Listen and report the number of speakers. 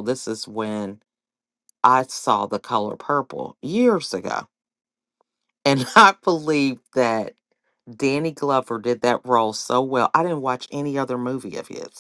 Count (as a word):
one